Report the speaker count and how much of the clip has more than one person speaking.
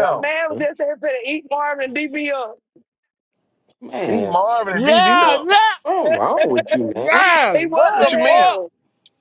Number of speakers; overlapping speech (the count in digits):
4, about 37%